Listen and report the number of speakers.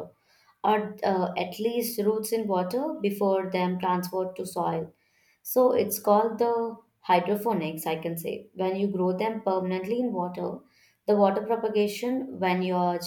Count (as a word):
one